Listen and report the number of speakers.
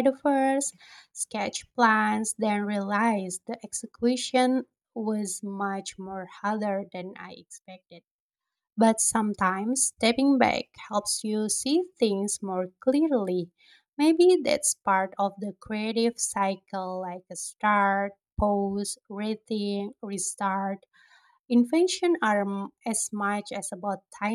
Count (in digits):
1